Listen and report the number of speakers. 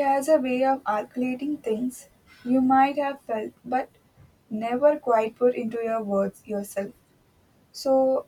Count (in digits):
1